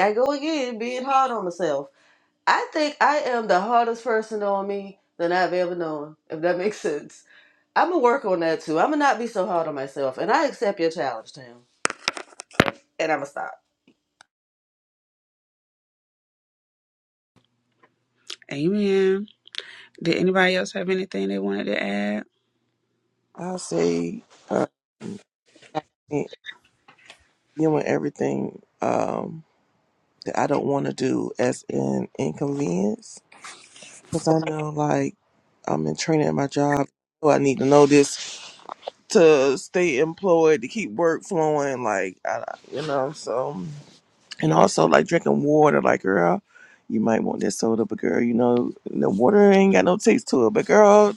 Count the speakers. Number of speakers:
3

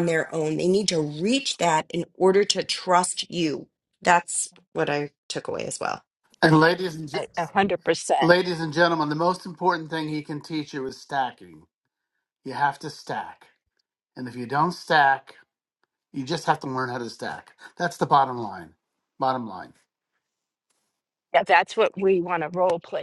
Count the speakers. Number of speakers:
3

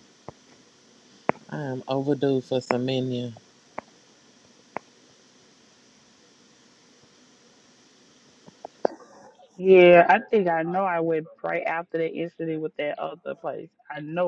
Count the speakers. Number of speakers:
2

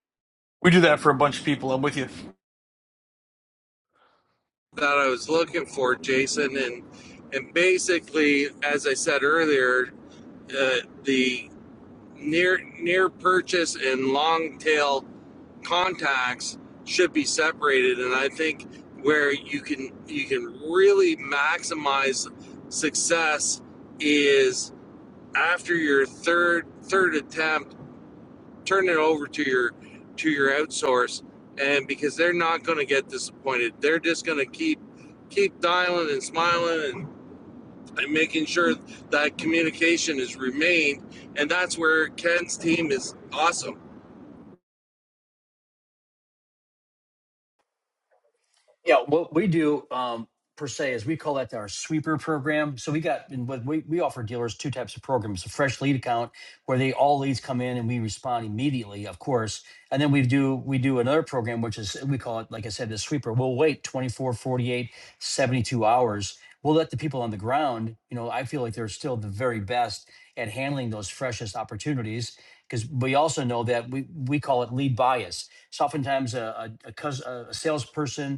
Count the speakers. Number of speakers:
3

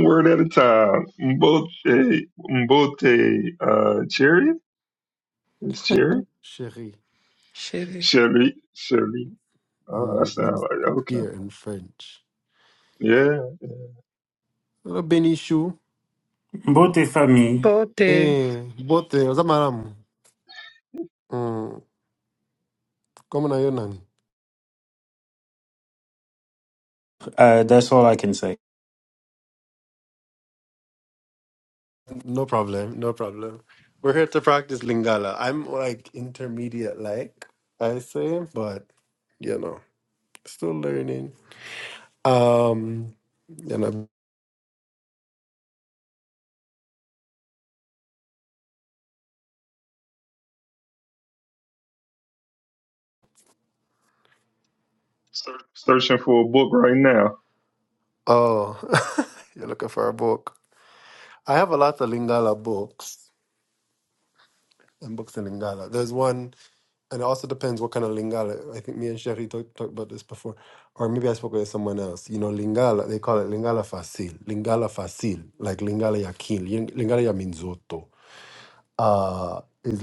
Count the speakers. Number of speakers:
4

